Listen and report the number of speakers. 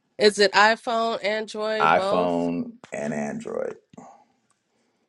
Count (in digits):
2